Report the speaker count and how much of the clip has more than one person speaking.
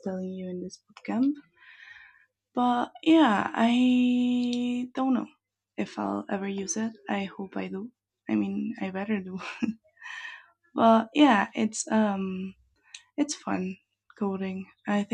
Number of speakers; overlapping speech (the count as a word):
one, no overlap